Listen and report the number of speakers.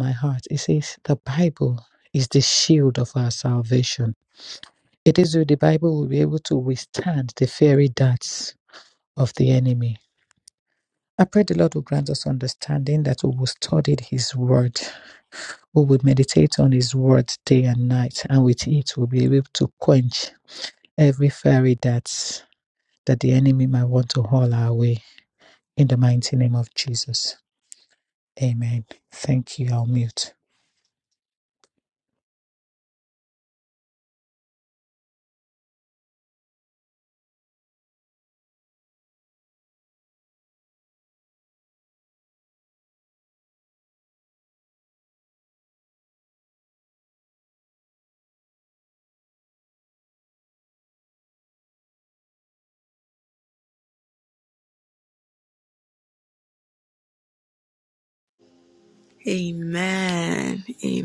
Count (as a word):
two